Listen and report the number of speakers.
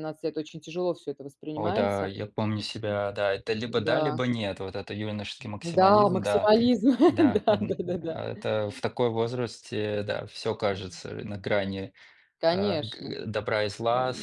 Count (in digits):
2